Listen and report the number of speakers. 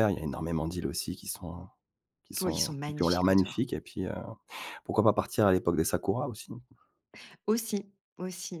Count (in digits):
2